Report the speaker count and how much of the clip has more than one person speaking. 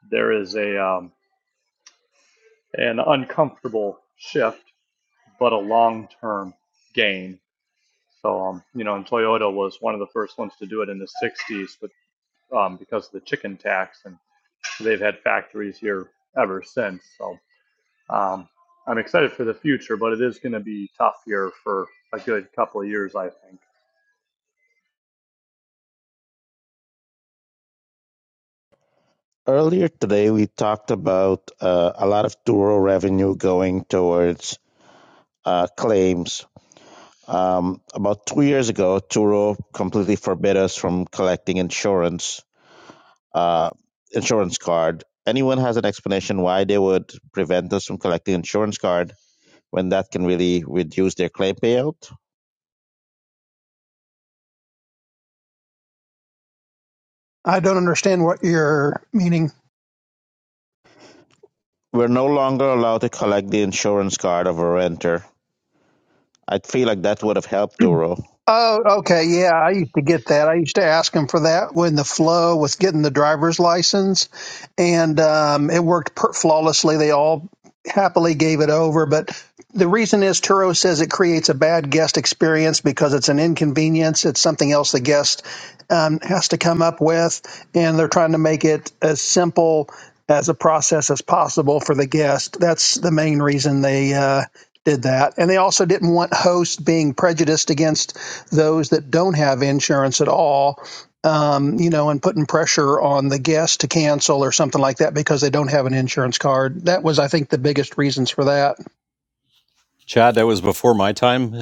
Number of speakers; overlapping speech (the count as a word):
four, no overlap